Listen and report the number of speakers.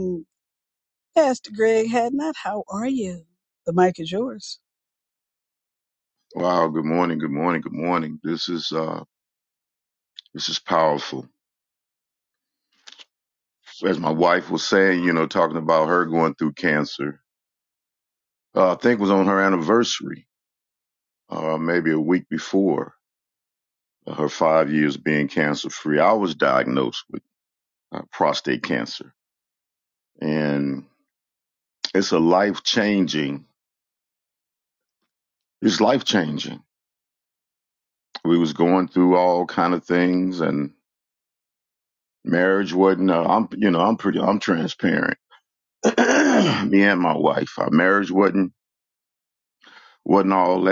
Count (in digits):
2